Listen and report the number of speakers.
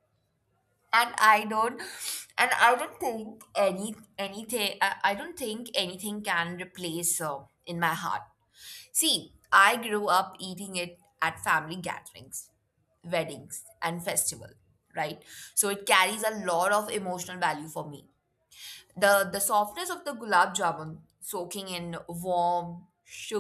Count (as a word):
one